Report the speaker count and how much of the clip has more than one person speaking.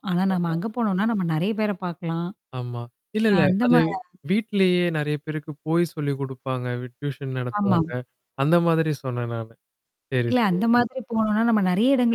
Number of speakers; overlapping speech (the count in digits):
2, about 13%